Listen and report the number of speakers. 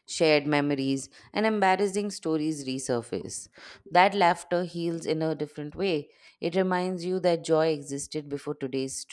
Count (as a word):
one